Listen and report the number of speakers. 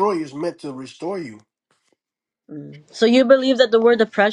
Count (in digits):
2